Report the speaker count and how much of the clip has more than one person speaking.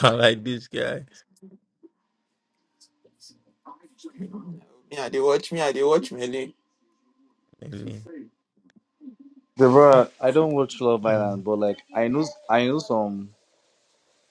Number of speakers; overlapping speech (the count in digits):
3, about 2%